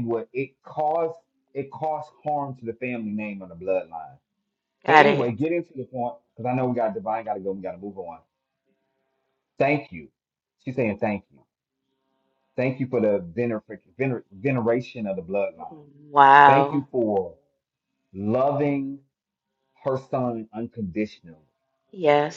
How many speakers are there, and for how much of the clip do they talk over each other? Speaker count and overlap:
2, about 3%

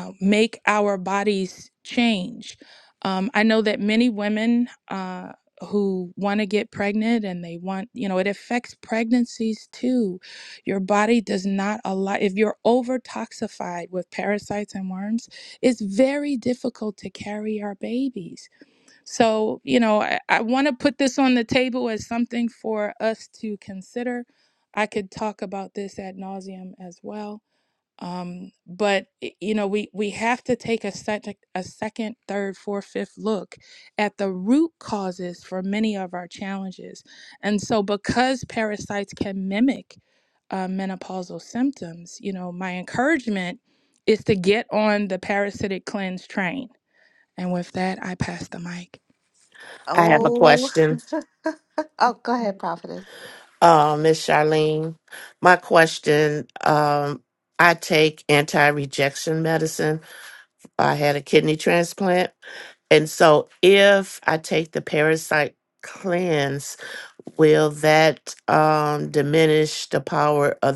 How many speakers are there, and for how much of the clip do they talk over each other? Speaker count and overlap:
3, about 1%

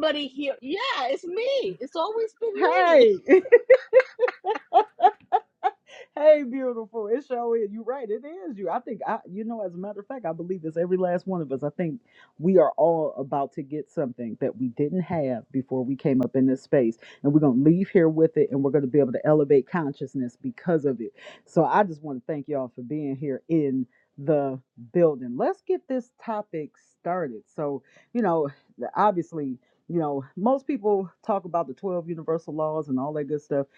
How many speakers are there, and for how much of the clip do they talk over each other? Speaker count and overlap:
2, about 2%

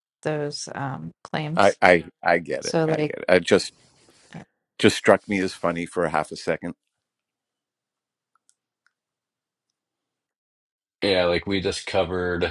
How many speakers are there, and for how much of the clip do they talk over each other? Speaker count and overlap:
3, about 5%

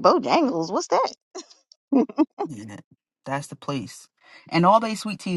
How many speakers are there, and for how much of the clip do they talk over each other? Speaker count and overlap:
2, no overlap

